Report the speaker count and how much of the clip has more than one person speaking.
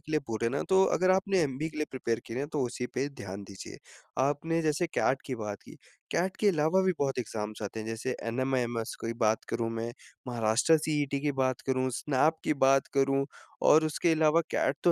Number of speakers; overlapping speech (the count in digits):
1, no overlap